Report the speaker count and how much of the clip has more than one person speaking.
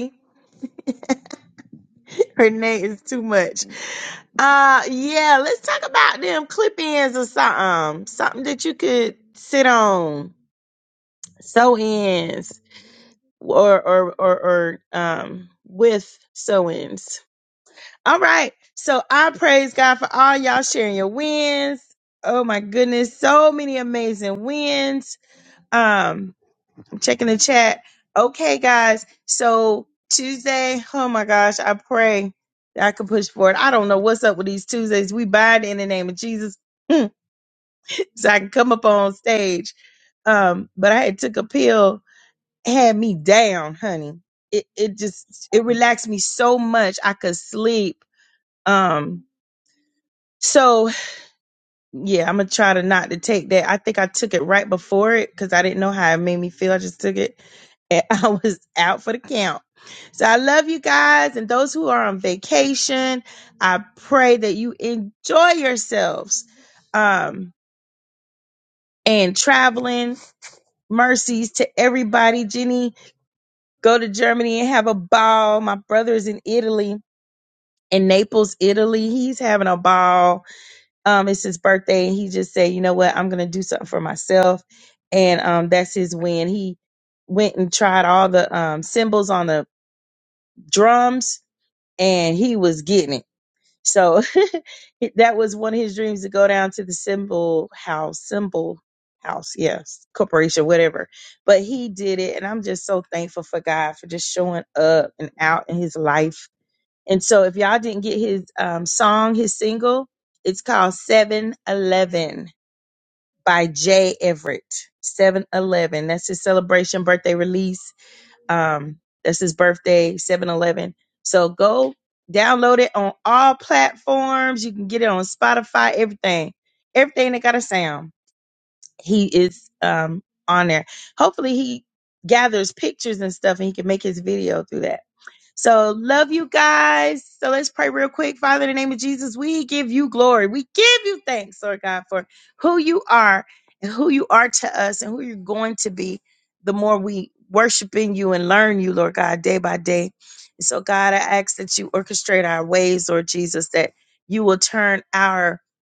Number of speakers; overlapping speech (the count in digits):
1, no overlap